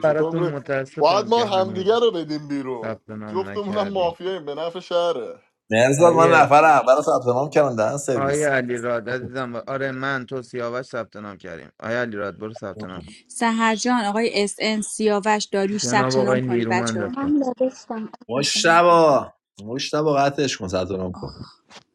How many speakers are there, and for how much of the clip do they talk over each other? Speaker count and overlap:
5, about 22%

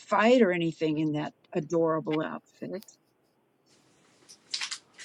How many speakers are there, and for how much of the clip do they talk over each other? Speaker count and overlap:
1, no overlap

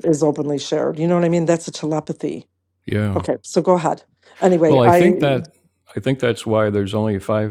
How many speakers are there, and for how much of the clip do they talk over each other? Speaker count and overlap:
2, about 10%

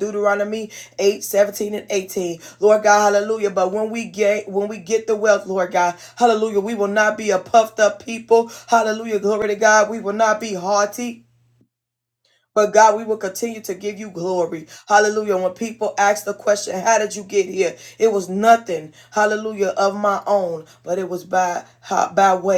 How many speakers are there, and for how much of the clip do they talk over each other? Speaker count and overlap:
1, no overlap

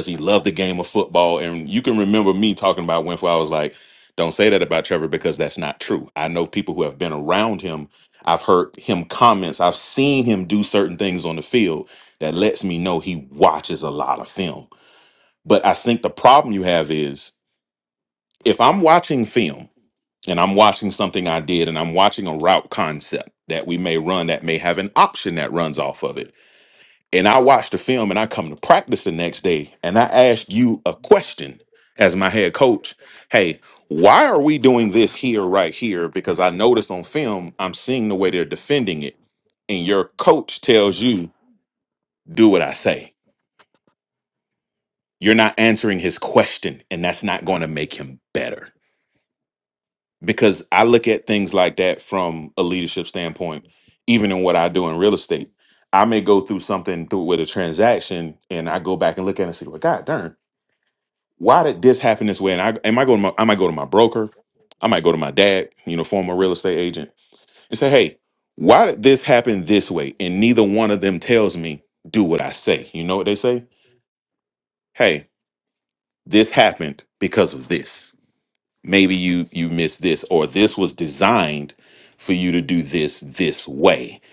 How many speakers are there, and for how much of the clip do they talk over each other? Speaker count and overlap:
1, no overlap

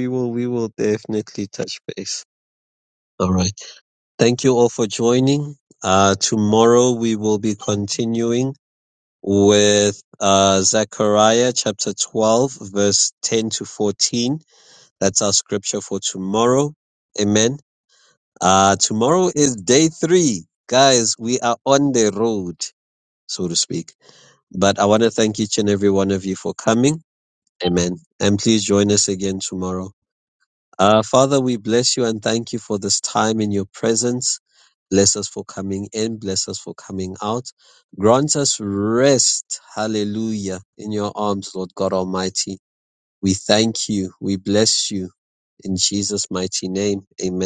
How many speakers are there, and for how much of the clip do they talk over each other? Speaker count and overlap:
1, no overlap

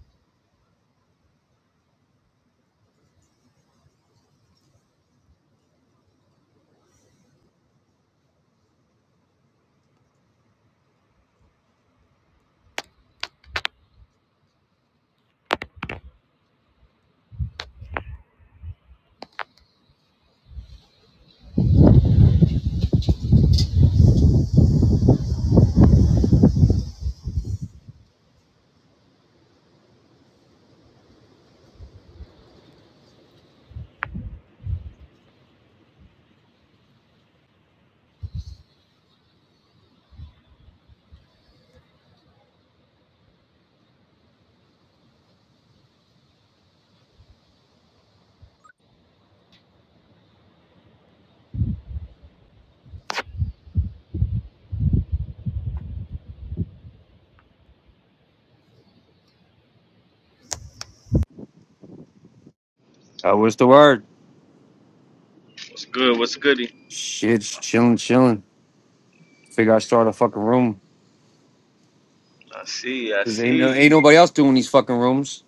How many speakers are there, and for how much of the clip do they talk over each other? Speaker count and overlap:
2, about 1%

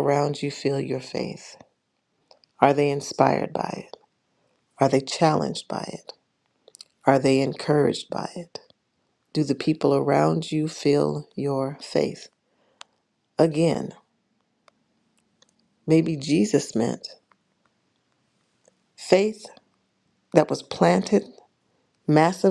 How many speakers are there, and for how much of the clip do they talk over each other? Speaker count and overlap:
1, no overlap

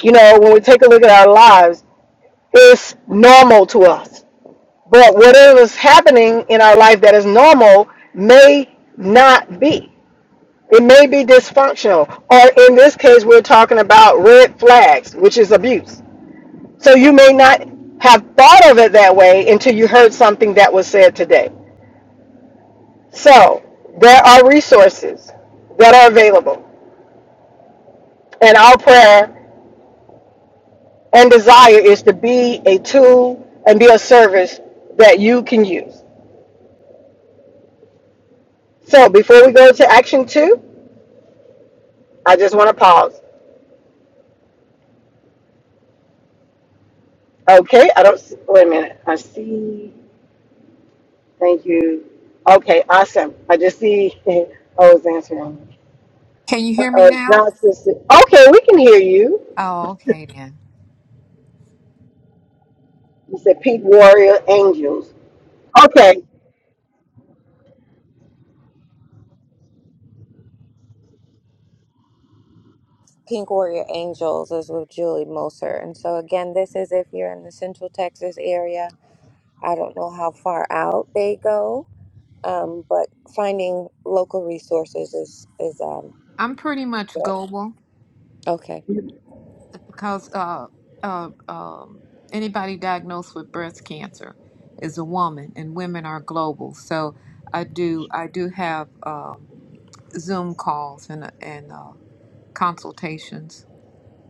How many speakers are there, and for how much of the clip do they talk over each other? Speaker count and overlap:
3, about 1%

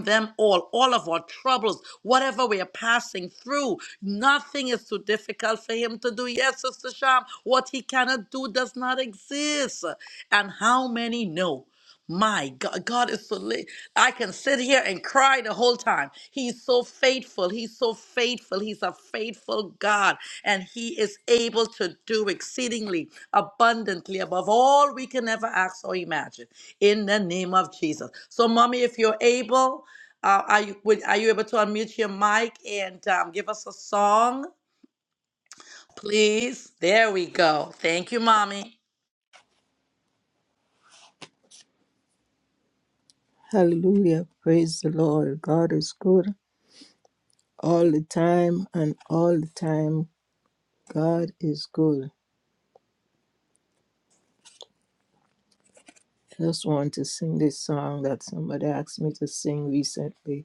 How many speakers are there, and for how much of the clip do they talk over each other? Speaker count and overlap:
2, no overlap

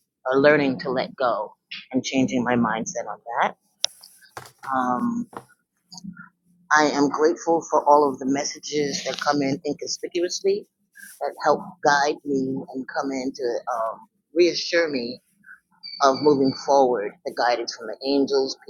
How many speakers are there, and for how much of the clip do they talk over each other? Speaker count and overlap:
1, no overlap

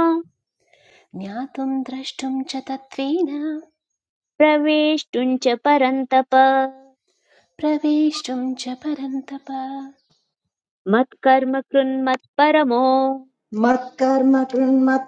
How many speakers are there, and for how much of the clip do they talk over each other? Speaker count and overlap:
3, no overlap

